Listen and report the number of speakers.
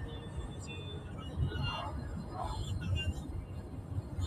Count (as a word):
zero